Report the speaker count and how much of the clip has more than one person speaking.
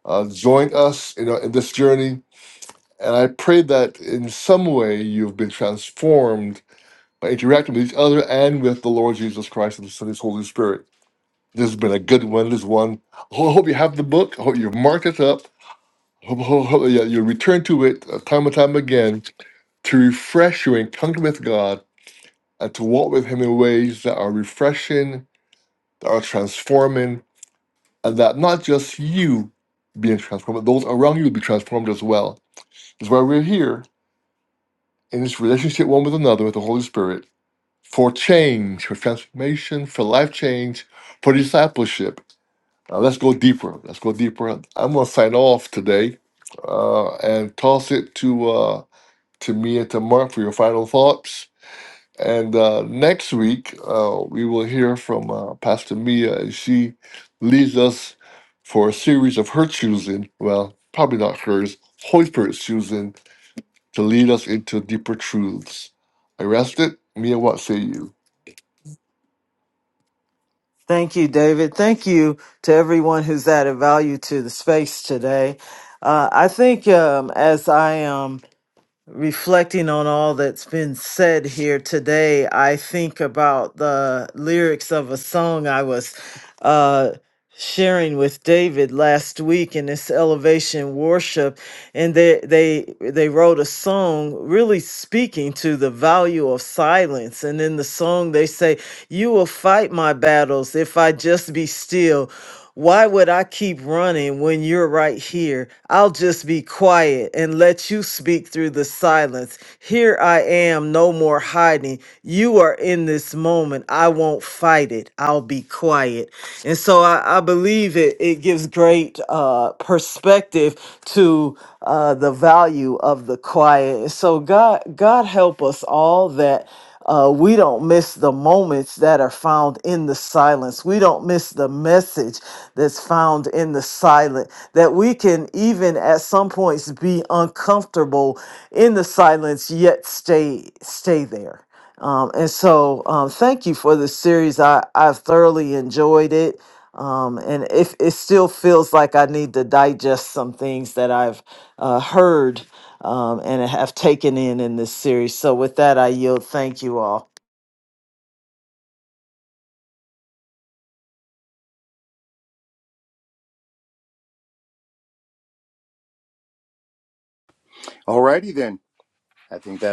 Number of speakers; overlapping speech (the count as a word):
three, no overlap